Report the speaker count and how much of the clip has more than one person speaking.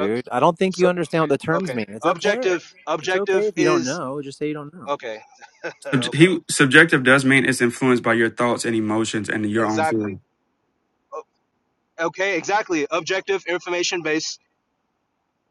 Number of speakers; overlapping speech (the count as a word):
three, about 19%